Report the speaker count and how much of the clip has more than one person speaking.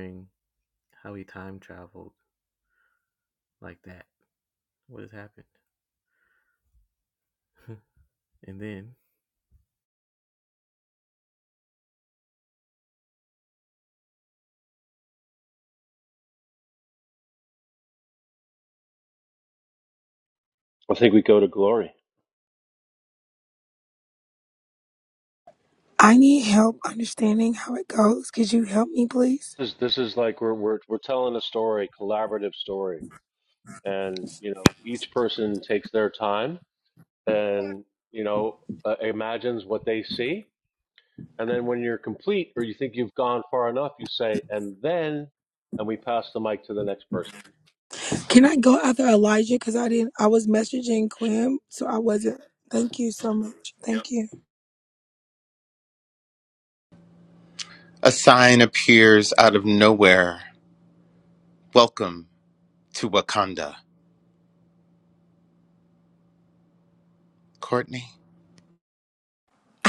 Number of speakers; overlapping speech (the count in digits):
4, no overlap